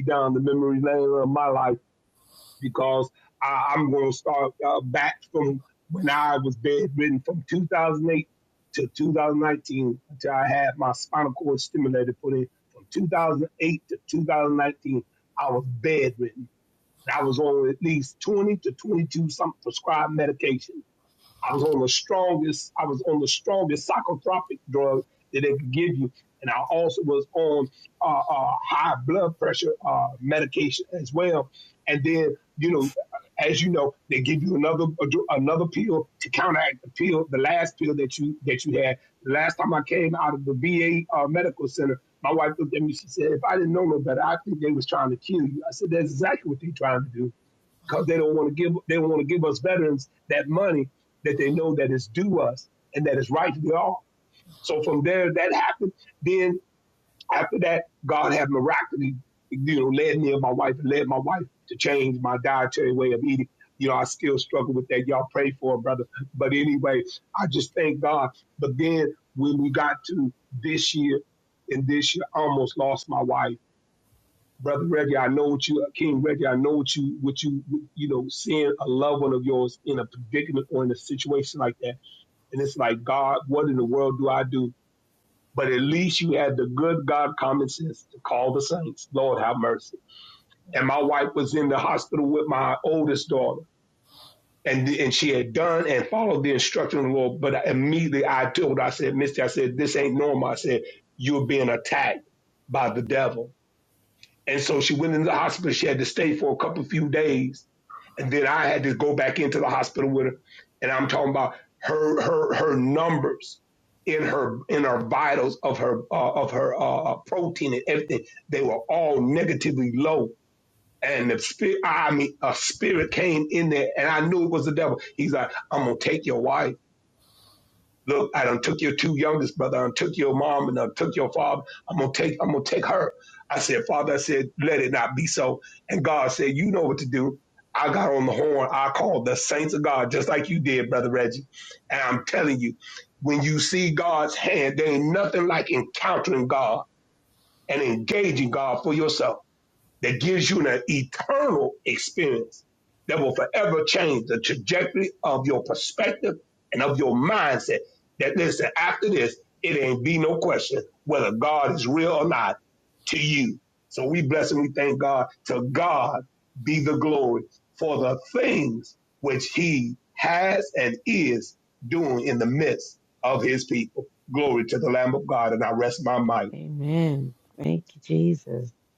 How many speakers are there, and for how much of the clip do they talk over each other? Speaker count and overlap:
two, no overlap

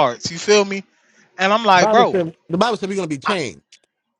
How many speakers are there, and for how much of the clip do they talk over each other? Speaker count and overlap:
two, about 13%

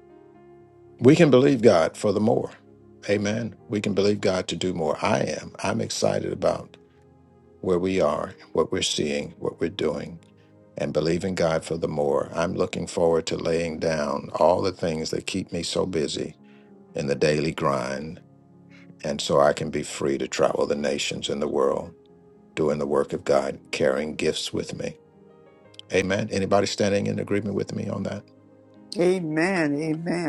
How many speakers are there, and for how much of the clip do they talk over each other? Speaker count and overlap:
two, no overlap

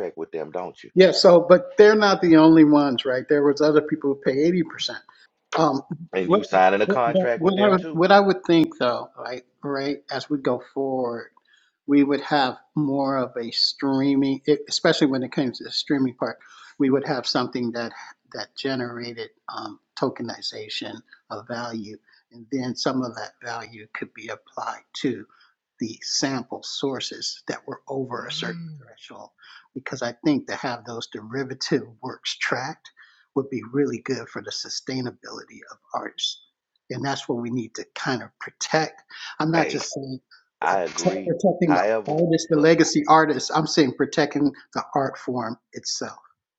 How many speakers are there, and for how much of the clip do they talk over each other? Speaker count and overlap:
two, about 6%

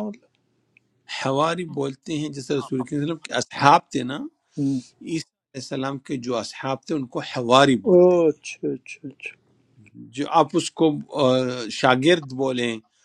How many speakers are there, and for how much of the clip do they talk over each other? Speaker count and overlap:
two, about 1%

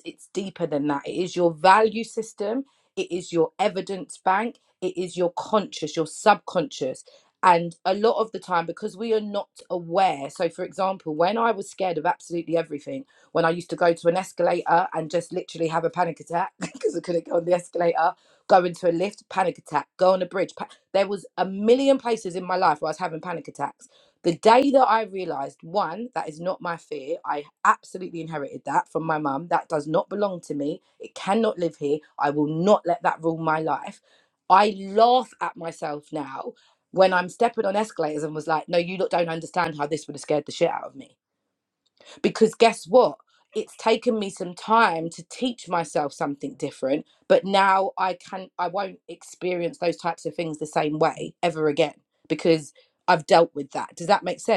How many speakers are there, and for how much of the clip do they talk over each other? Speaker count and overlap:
one, no overlap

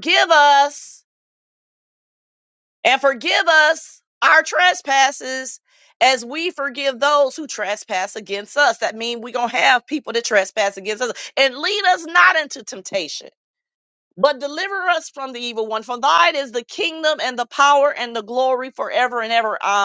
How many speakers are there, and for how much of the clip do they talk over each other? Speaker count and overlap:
one, no overlap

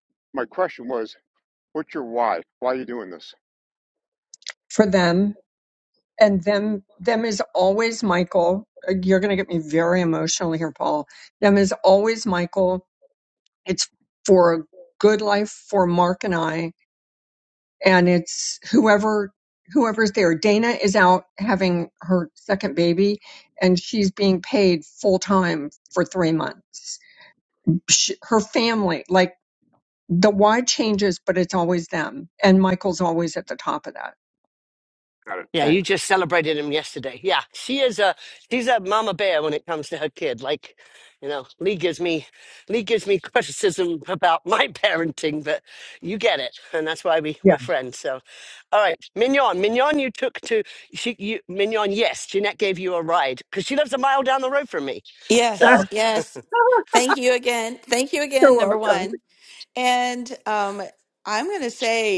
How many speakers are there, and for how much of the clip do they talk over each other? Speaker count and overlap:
four, about 2%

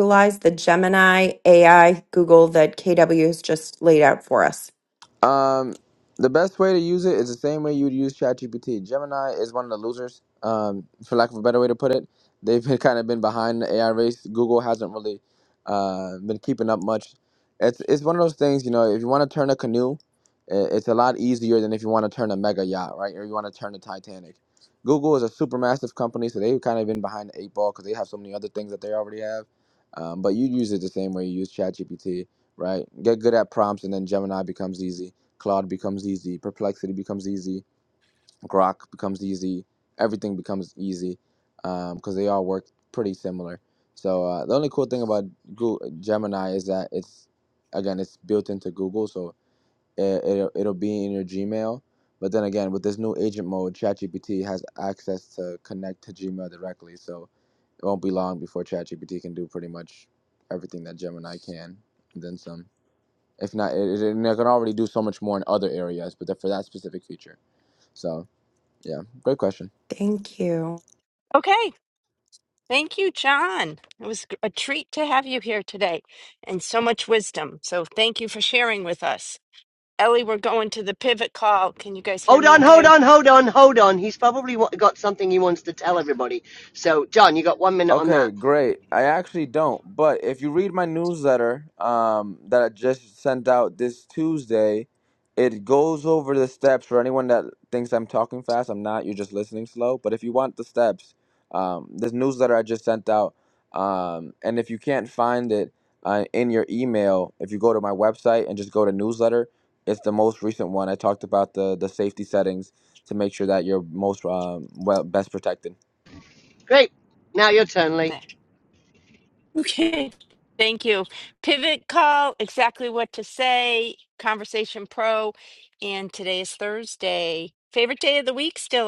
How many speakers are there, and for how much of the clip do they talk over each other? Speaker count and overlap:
four, about 1%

